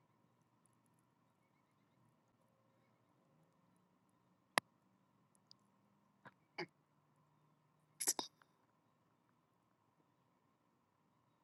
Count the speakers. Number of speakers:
0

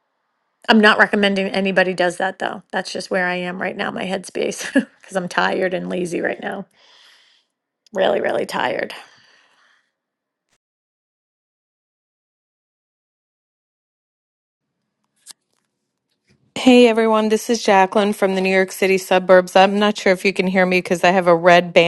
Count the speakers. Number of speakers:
2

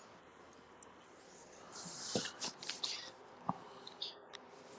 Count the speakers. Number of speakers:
0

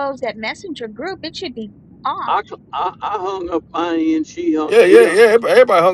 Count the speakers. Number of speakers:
3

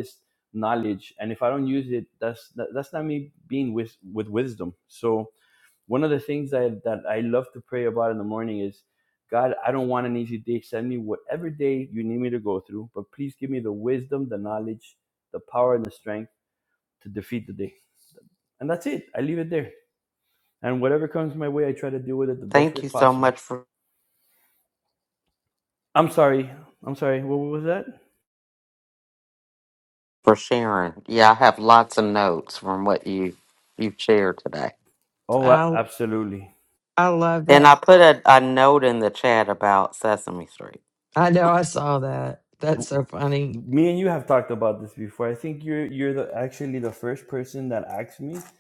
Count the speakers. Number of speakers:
3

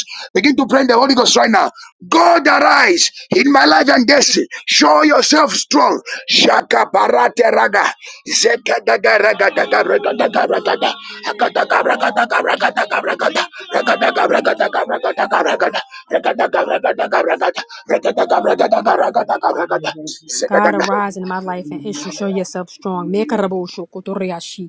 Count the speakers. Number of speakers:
2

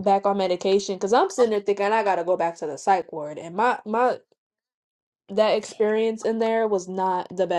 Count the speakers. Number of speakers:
1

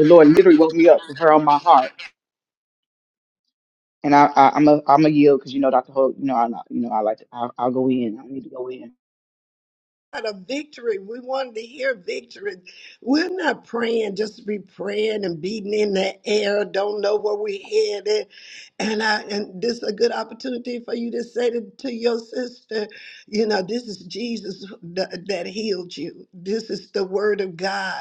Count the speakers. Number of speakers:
2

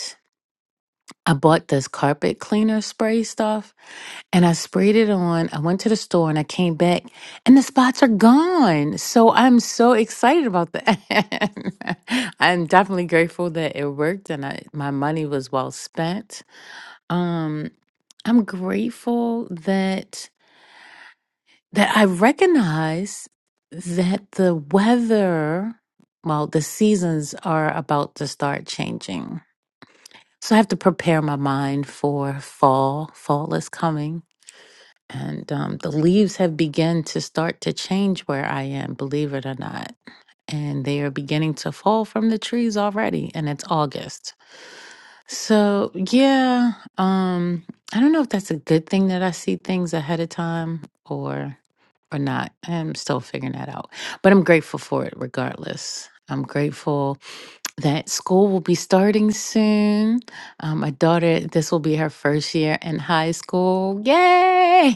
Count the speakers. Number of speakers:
1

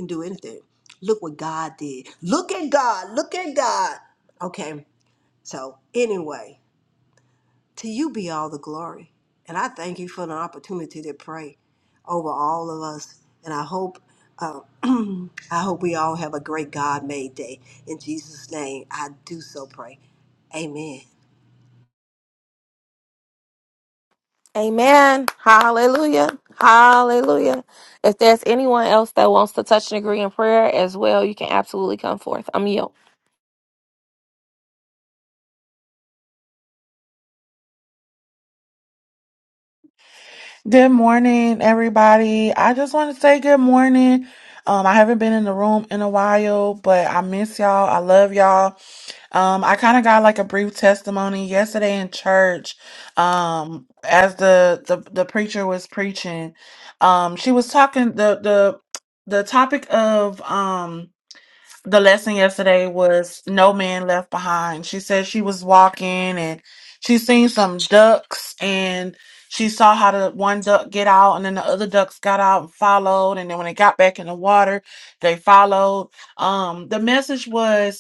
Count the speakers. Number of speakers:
3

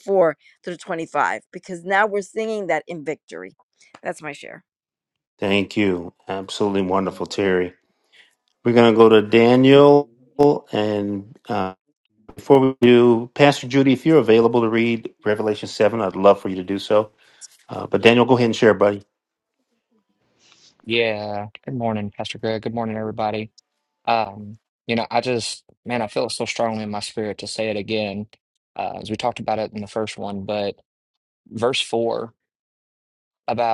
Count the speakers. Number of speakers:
3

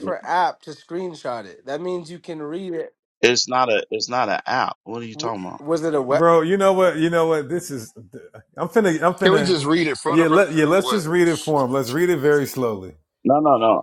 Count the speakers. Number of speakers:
4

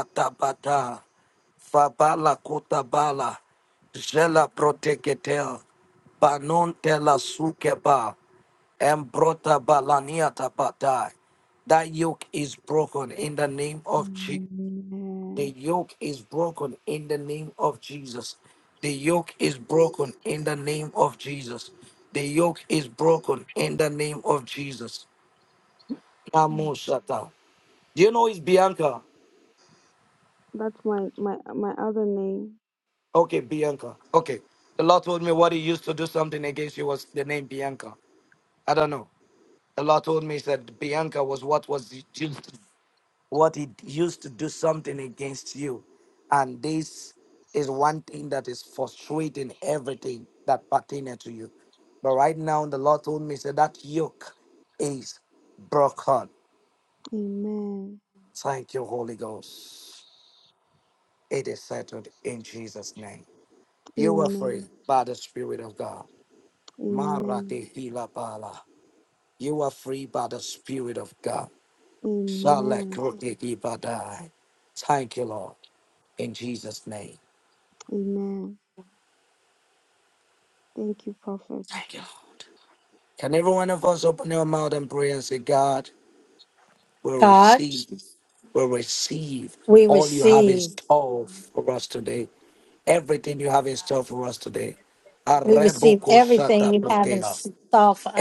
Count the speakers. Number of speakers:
3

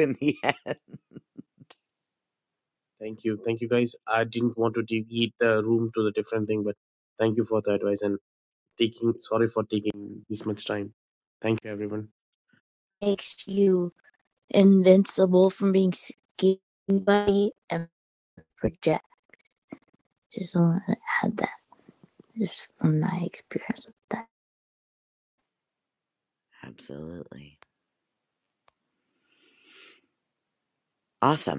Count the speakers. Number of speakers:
3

